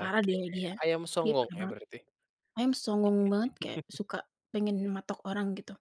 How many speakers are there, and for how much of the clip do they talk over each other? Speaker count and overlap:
2, about 22%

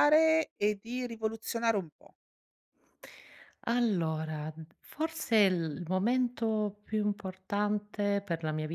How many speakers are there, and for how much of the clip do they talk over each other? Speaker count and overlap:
2, no overlap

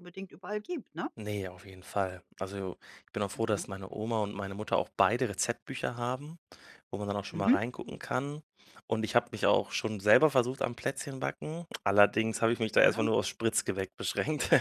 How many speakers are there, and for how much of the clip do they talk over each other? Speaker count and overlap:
2, about 5%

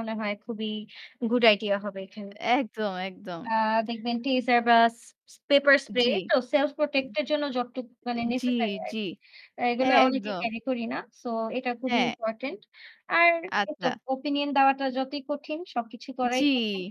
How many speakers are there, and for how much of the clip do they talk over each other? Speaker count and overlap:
2, about 14%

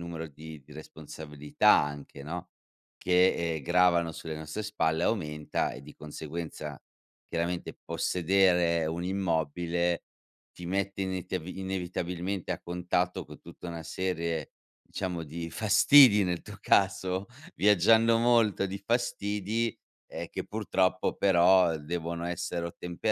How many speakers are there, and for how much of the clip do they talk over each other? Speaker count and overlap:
1, no overlap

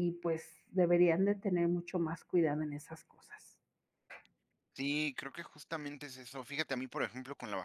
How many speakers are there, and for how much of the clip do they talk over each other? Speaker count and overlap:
2, no overlap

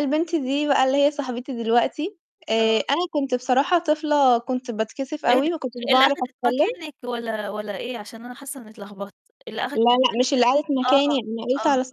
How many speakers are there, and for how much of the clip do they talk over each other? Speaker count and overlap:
2, about 19%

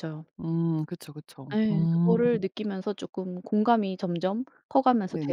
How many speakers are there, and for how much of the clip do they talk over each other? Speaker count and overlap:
2, about 17%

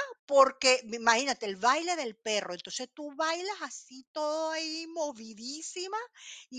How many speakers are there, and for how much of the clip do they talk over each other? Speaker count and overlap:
1, no overlap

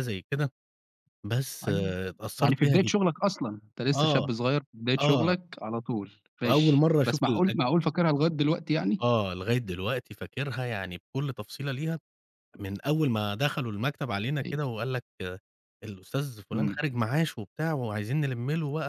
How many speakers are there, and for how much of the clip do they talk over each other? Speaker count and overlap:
2, about 16%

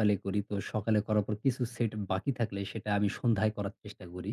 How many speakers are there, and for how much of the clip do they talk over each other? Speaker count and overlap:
1, no overlap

